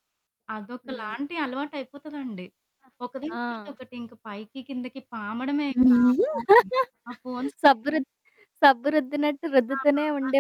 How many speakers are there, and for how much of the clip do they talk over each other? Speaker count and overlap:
two, about 12%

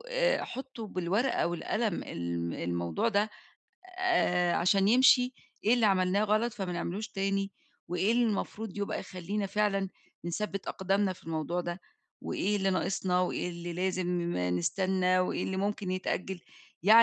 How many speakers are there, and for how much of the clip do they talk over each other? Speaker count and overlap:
one, no overlap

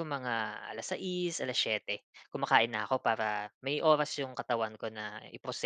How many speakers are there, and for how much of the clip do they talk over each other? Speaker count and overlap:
one, no overlap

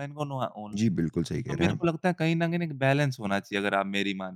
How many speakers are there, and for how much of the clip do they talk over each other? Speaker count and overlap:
two, about 7%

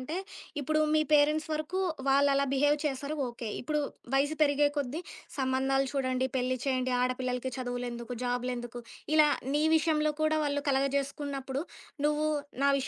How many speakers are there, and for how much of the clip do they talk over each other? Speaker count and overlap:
one, no overlap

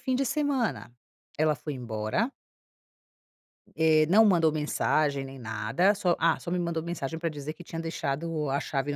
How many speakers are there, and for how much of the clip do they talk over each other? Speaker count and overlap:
one, no overlap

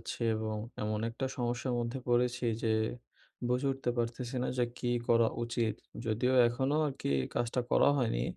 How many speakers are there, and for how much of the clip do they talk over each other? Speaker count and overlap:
one, no overlap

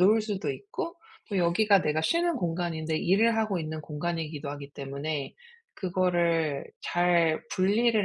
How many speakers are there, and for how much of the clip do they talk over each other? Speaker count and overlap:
one, no overlap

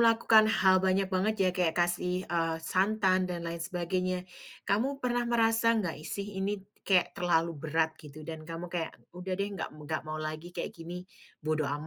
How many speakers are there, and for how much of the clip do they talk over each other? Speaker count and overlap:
one, no overlap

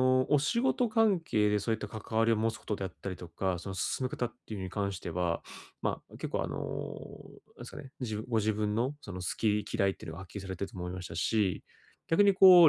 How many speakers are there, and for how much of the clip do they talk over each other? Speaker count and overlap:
one, no overlap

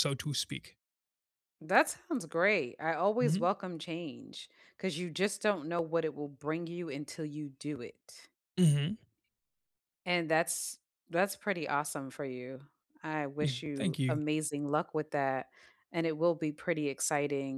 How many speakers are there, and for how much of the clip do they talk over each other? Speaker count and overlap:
two, about 6%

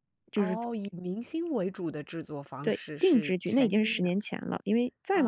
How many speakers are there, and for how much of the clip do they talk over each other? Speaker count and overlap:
two, about 31%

